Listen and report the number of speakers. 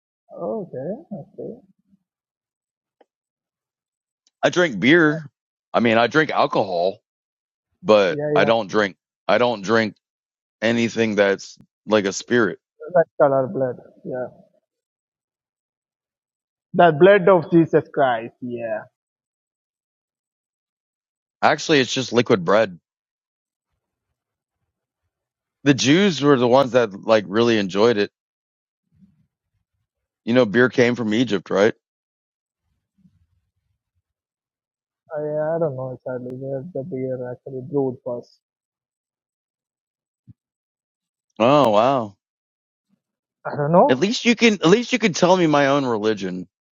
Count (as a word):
two